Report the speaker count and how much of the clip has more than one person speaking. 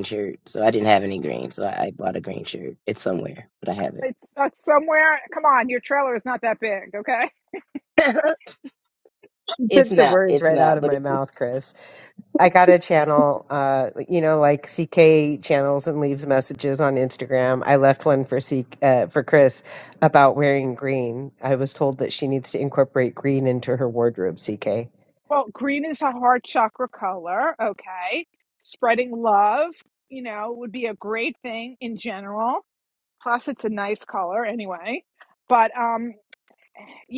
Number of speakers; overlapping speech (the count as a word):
three, about 3%